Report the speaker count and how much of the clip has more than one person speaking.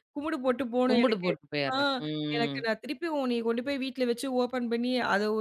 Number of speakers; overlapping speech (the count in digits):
2, about 17%